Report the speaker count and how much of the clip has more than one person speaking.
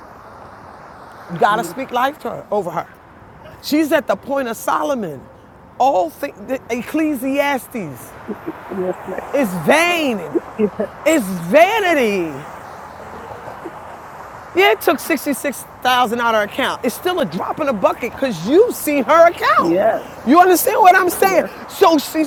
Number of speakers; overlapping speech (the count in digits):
2, about 3%